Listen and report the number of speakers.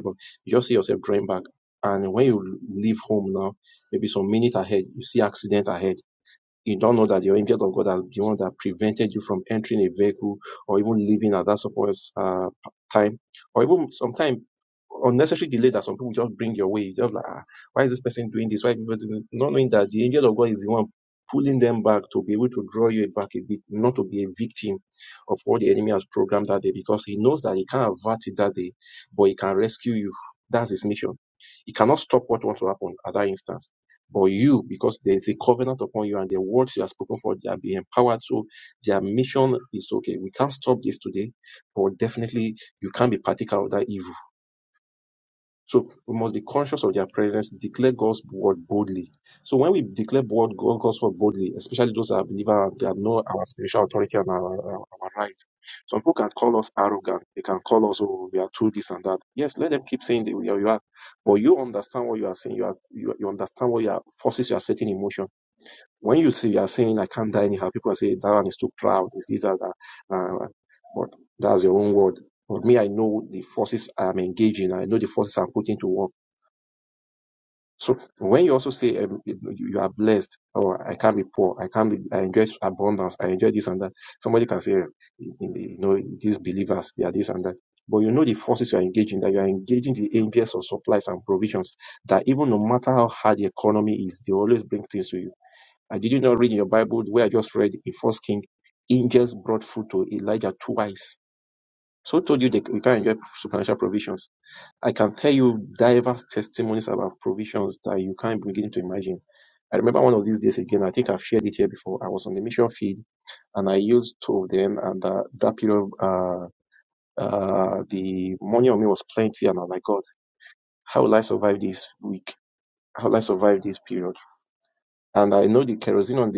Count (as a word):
one